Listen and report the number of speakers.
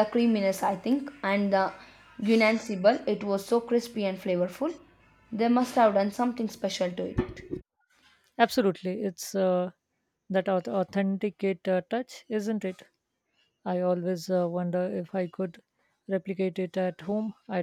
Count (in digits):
2